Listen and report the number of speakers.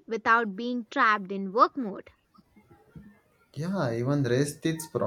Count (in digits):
2